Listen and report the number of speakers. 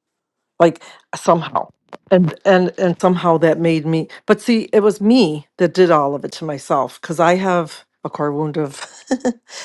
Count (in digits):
1